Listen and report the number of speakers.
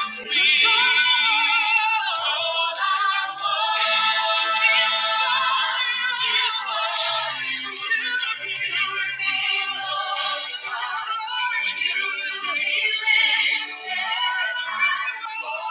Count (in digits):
1